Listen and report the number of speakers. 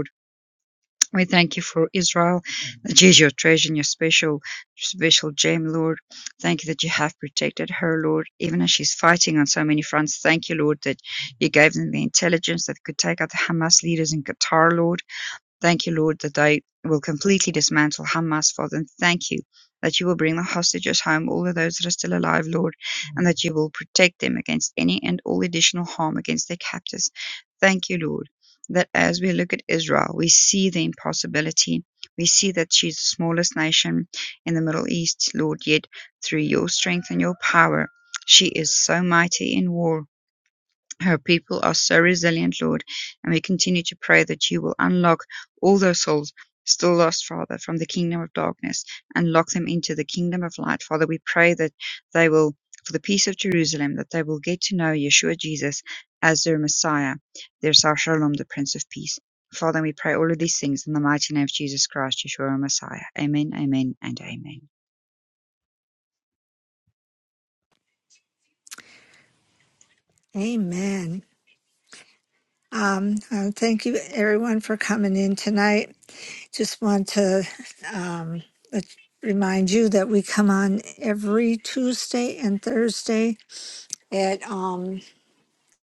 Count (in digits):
2